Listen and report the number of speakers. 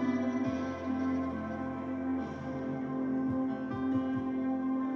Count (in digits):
0